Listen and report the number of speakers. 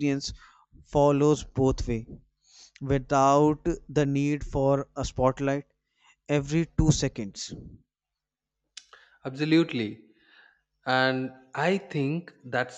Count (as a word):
two